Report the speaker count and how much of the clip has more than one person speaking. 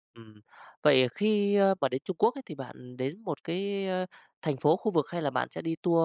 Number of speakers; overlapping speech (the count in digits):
1, no overlap